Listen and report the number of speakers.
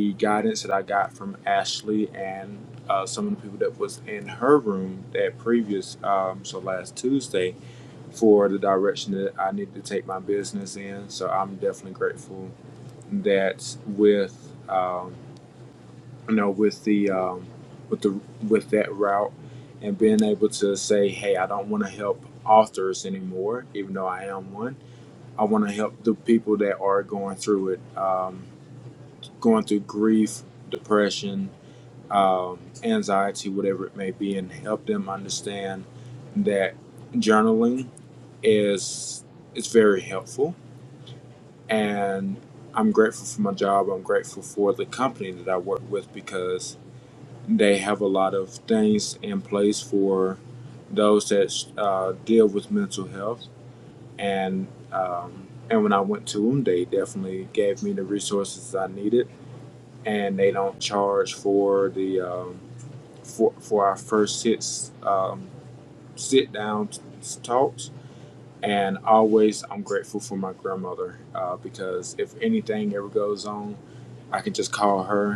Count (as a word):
one